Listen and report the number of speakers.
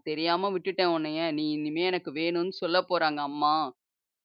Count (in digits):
1